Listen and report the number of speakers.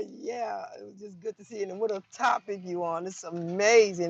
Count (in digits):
1